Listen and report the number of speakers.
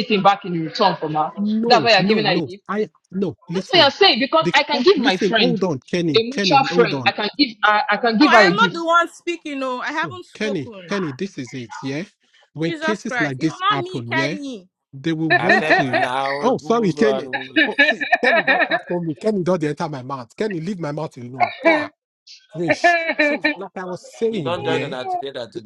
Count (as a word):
four